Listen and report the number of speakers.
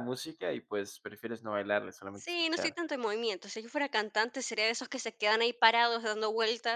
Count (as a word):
two